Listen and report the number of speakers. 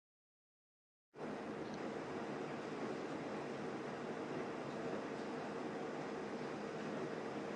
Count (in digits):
0